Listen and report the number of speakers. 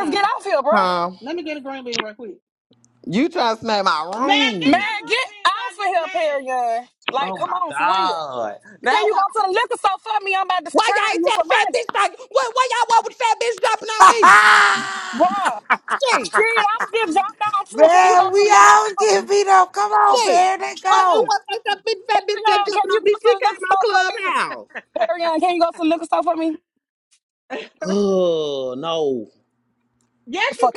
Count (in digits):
4